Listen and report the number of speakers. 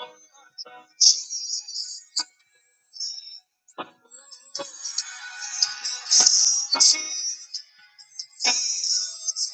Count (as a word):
zero